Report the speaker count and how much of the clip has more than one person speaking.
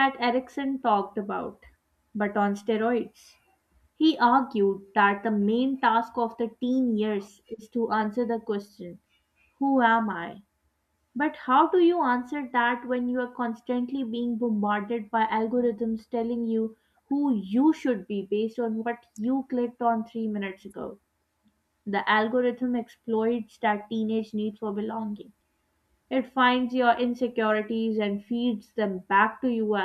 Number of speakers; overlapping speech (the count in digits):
1, no overlap